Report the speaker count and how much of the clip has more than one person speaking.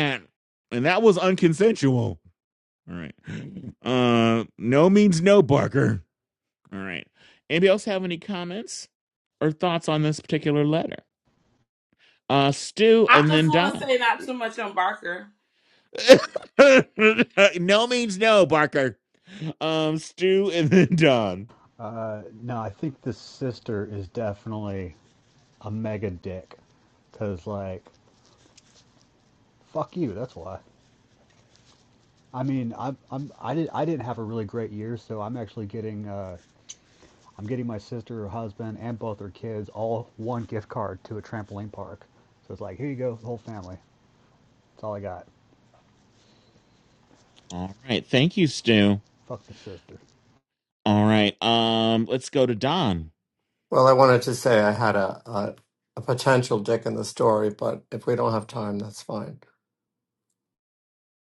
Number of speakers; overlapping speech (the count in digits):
4, about 1%